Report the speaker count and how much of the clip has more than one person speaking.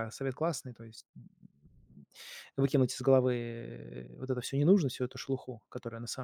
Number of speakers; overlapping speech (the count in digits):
1, no overlap